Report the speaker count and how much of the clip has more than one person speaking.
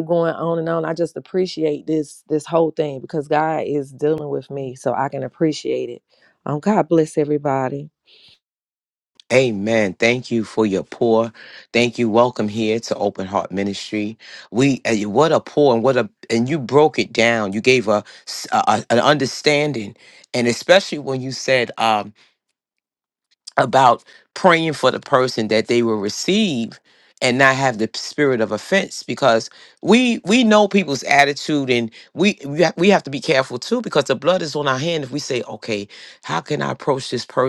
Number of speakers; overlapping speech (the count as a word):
two, no overlap